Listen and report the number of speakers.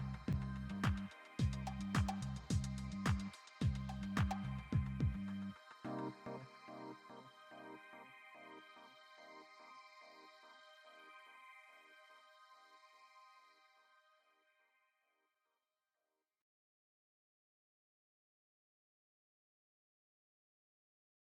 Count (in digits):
0